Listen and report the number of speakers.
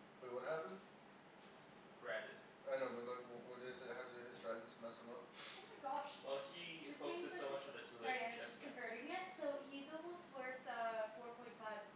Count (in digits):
3